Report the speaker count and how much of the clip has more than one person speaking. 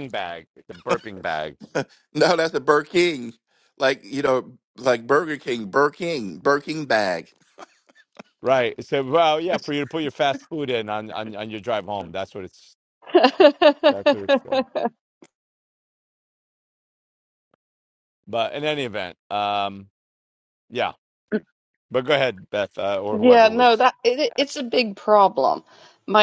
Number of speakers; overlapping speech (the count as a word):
three, about 2%